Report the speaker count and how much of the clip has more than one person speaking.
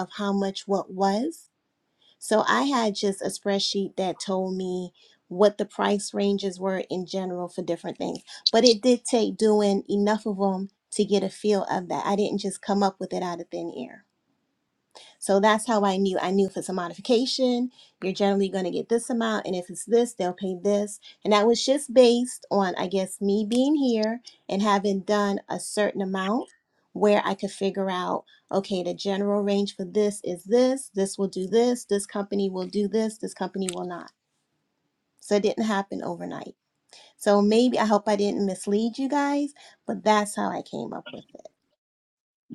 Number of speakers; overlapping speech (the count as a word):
one, no overlap